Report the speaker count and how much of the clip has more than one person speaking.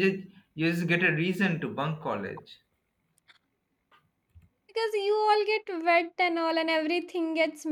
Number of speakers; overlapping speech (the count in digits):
2, no overlap